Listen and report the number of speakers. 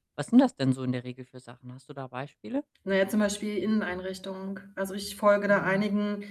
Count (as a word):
two